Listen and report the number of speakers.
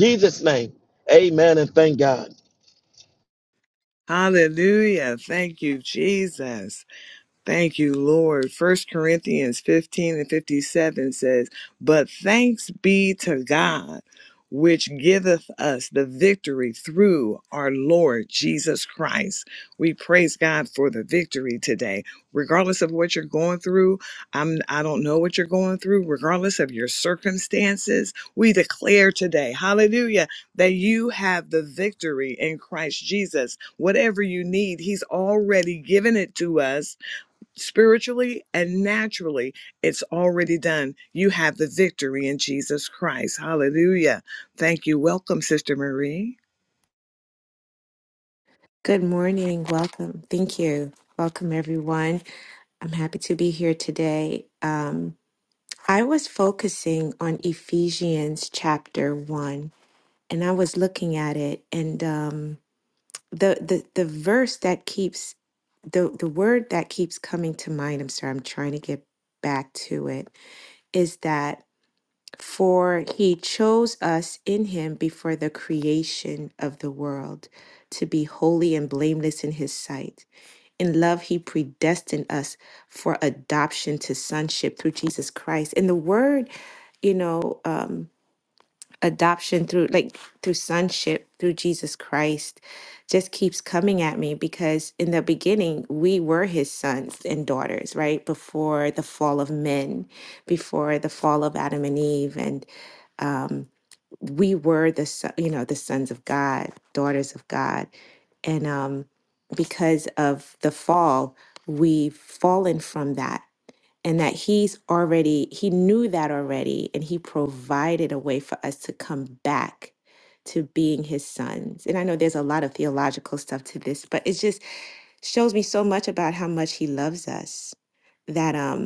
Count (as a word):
three